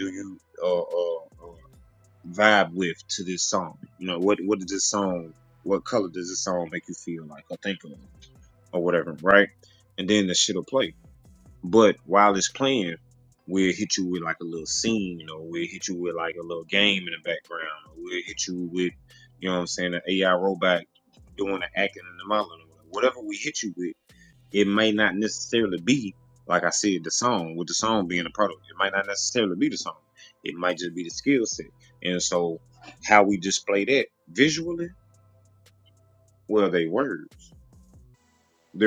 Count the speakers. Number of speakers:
1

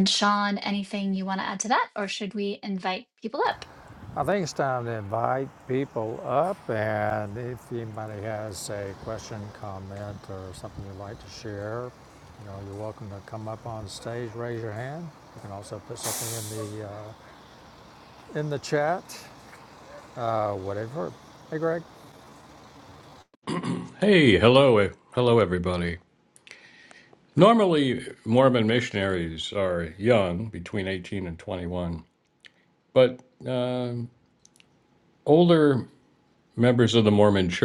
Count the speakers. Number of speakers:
3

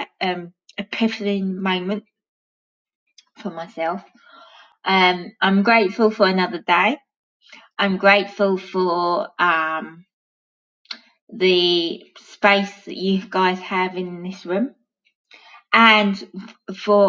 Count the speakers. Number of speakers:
1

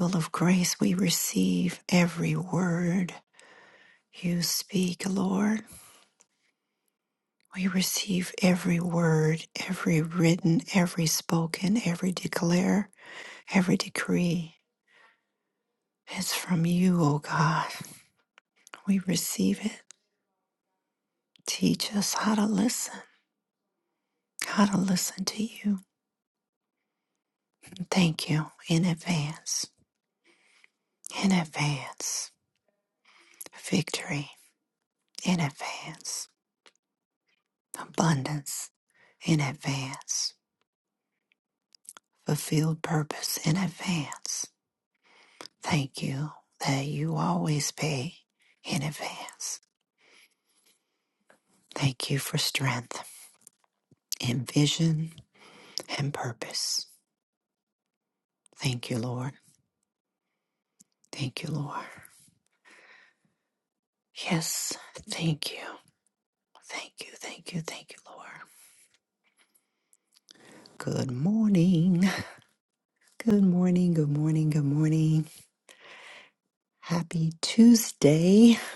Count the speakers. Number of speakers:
1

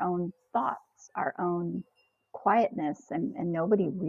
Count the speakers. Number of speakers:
1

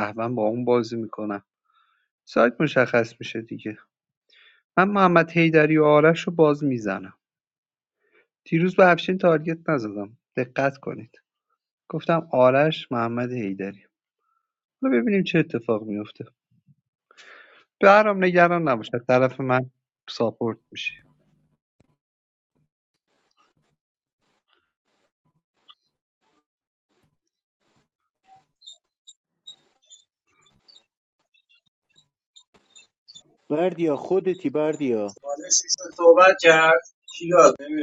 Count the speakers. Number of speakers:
3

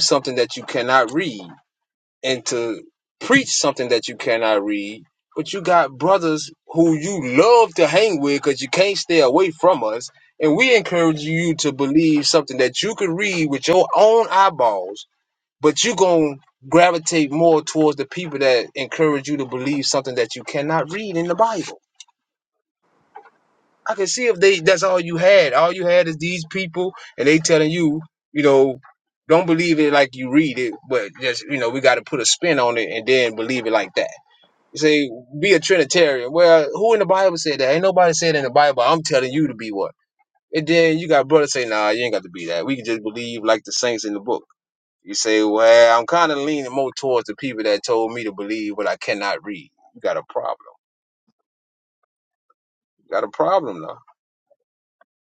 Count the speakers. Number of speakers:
1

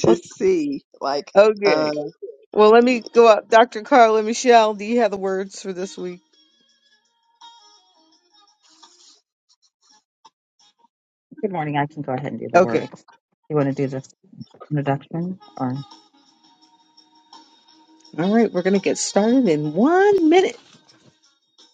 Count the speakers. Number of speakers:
3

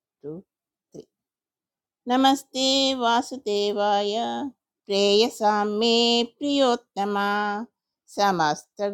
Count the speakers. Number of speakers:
1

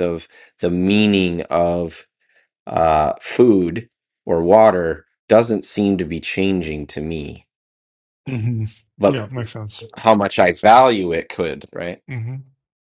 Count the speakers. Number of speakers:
2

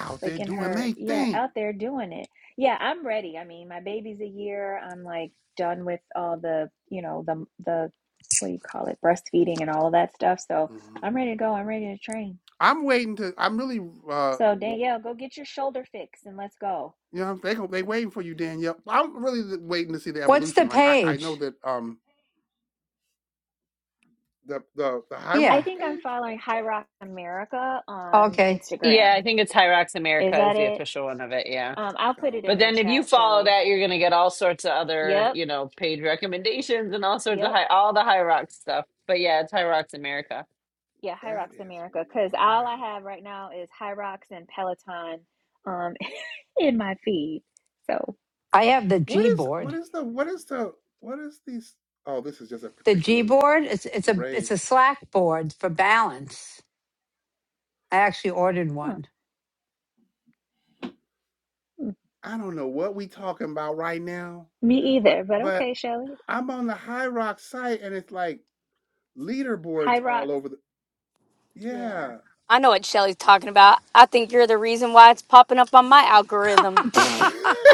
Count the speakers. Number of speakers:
5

